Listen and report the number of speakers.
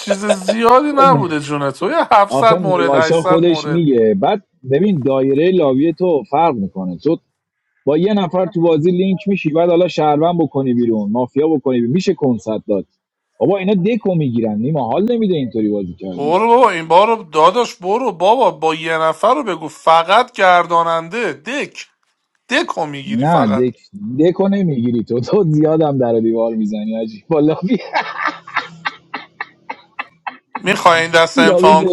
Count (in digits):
2